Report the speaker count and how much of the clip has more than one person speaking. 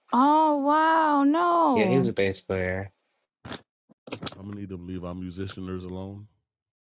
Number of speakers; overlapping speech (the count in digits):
3, about 5%